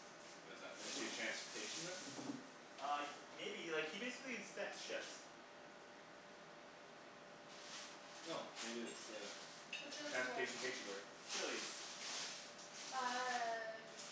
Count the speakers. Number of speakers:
3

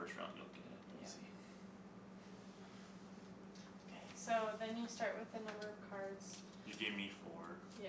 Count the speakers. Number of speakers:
2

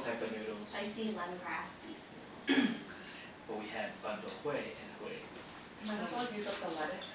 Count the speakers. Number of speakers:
3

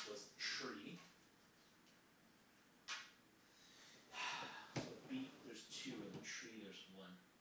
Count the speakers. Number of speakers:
1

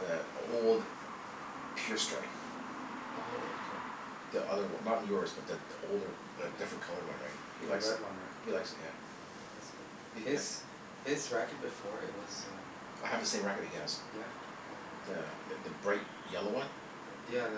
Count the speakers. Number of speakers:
2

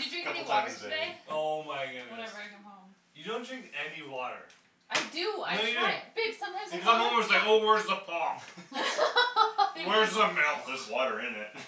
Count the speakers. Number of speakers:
4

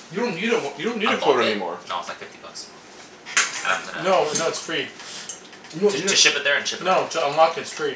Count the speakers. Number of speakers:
3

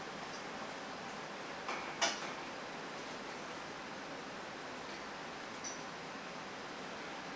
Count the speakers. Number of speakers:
0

